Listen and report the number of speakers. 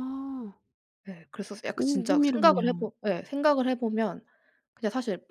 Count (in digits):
2